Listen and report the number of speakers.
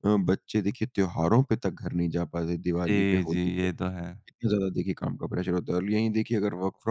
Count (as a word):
two